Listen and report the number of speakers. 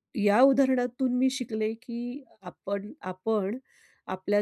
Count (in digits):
1